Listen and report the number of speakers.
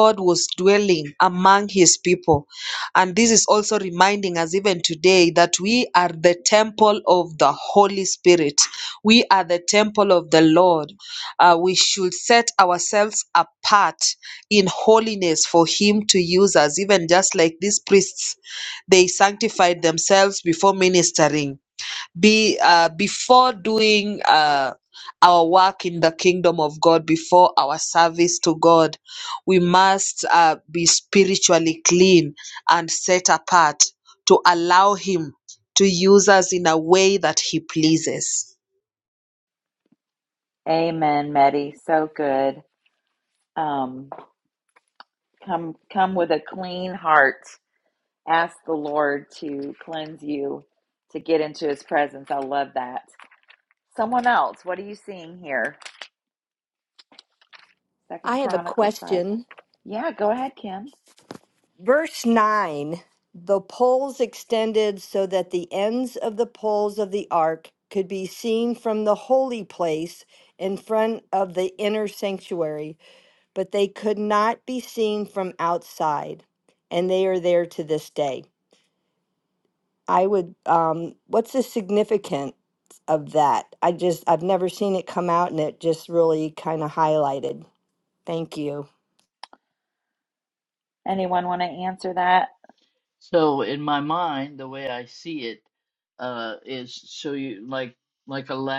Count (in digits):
4